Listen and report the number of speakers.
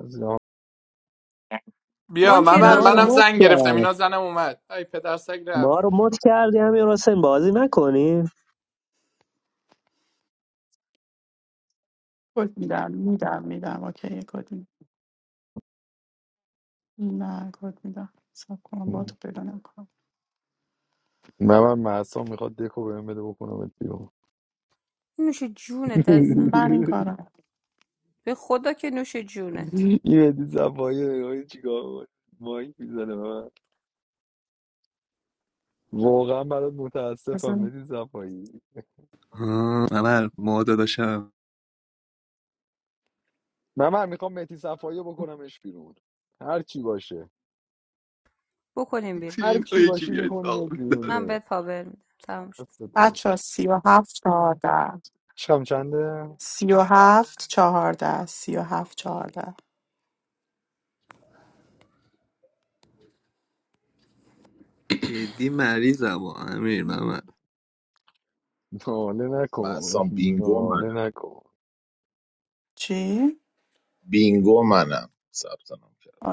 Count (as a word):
seven